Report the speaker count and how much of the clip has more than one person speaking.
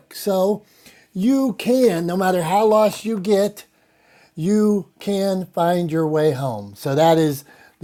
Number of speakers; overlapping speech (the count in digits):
1, no overlap